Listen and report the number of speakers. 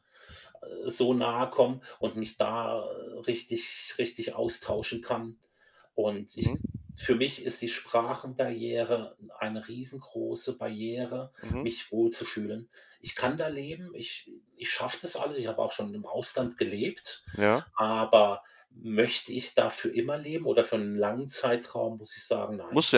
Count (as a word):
two